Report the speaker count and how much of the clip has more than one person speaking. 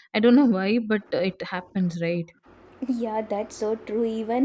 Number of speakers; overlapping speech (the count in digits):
2, no overlap